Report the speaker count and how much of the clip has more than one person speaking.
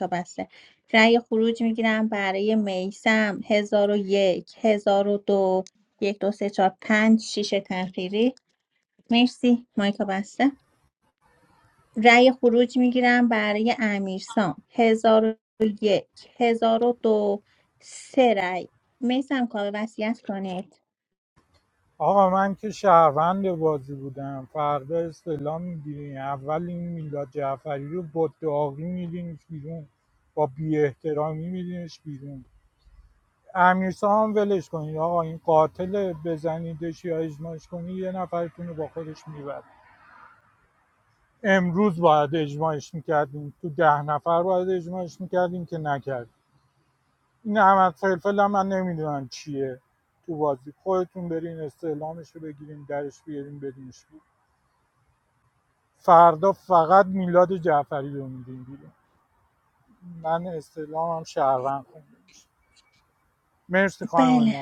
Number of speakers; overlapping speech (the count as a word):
two, about 1%